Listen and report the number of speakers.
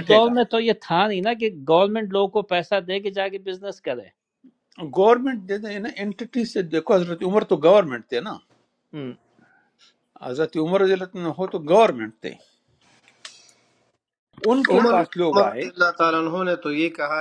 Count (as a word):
three